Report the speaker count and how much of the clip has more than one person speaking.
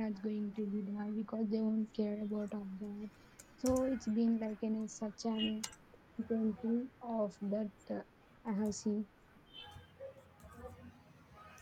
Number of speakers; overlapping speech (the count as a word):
one, no overlap